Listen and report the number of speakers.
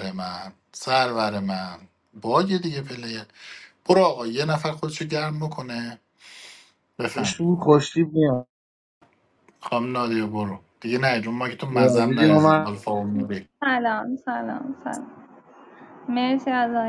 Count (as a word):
three